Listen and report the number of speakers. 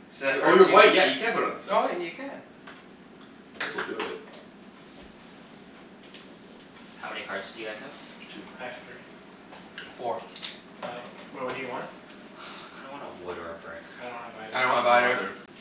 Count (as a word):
four